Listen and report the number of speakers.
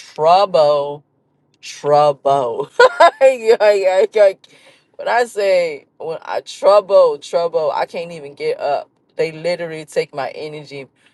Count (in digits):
1